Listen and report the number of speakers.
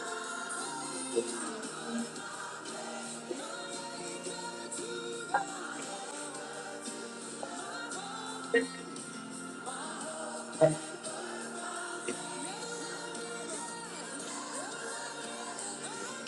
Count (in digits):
0